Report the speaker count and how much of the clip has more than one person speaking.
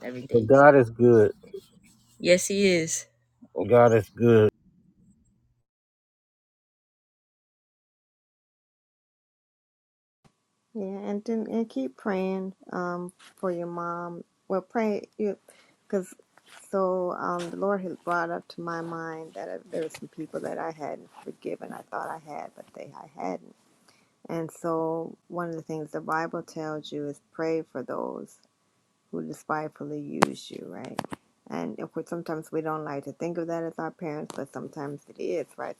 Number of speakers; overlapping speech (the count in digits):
3, about 1%